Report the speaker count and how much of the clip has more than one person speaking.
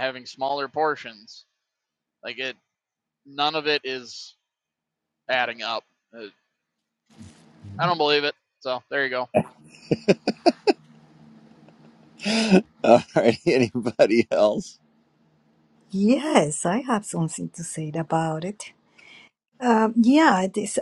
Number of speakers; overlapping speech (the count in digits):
3, no overlap